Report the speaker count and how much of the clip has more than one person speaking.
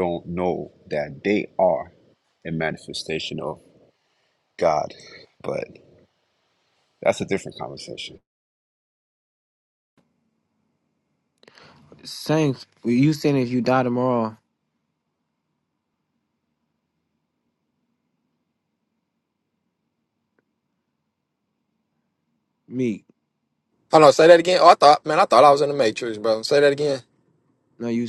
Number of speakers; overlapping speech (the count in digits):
3, no overlap